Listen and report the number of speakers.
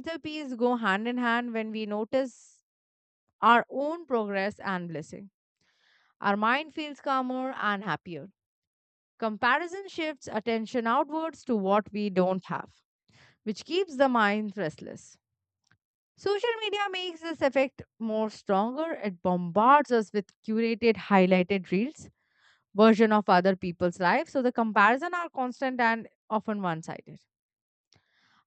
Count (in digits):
1